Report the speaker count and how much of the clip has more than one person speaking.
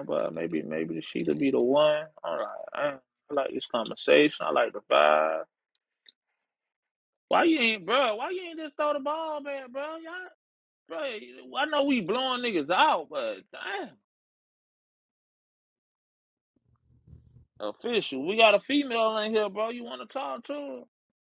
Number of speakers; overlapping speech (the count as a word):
one, no overlap